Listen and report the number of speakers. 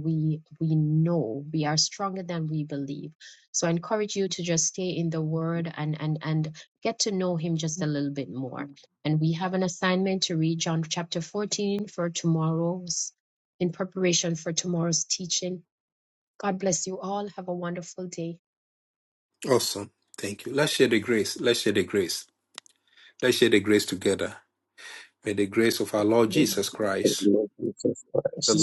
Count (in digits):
3